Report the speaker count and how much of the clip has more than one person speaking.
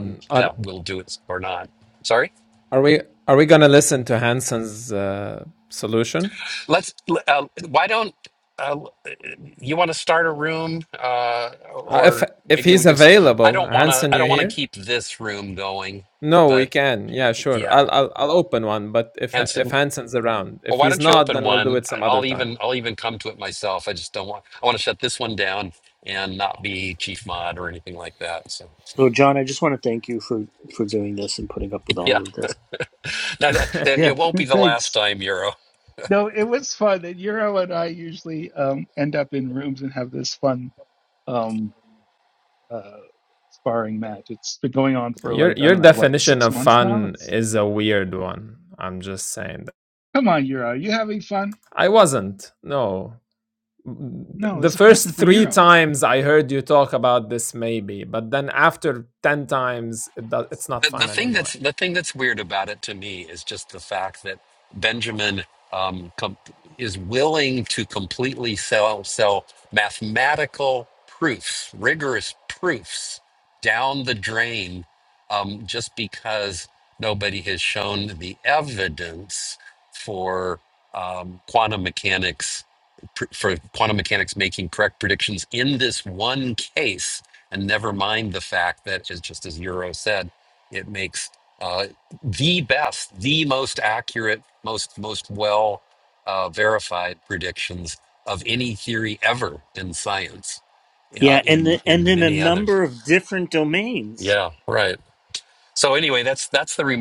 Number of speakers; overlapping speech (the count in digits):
4, about 11%